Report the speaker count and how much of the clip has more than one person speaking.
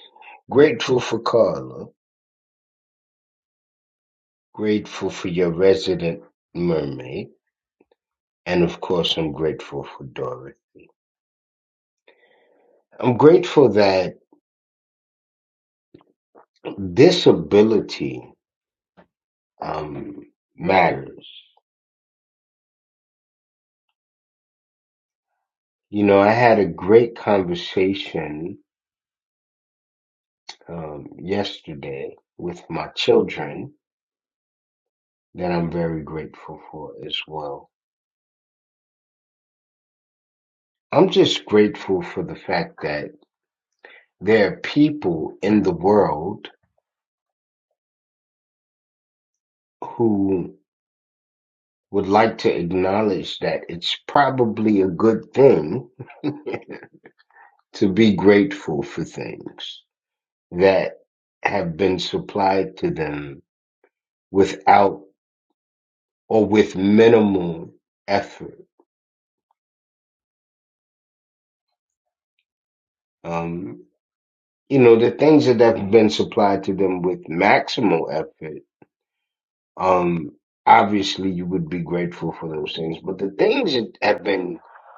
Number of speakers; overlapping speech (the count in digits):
1, no overlap